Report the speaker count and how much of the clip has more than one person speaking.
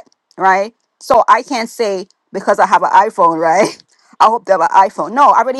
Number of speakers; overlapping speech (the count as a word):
one, no overlap